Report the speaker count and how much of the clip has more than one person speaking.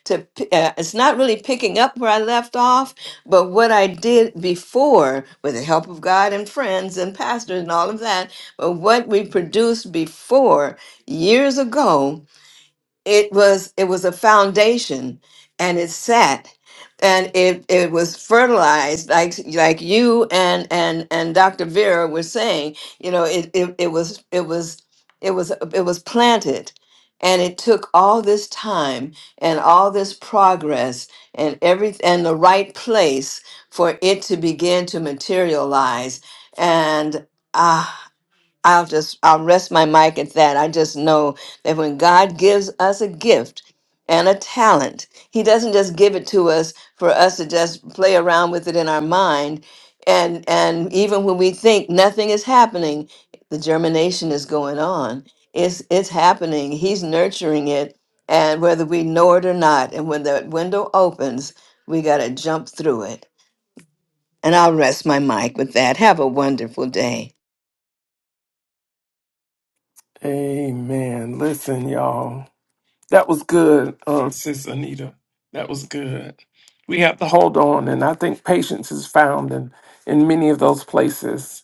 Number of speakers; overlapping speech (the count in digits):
2, no overlap